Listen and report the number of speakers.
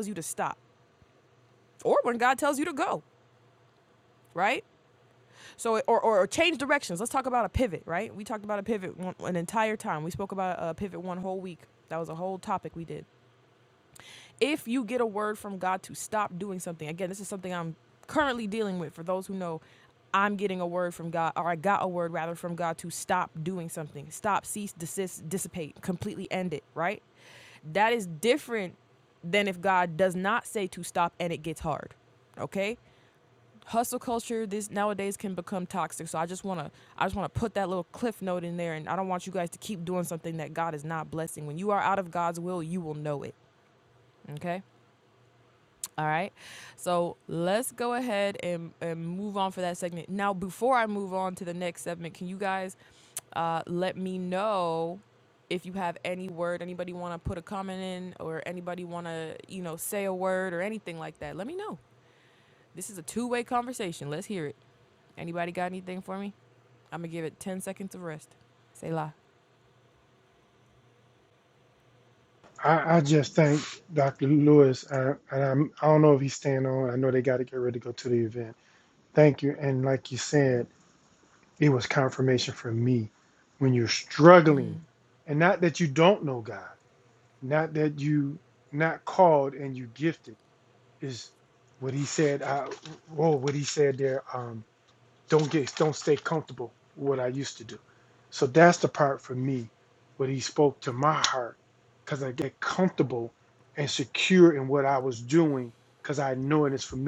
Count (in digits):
2